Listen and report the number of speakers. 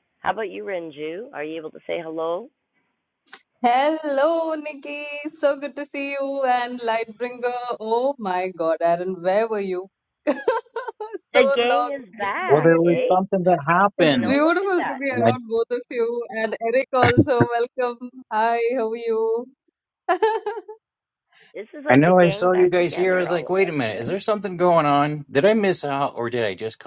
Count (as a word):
three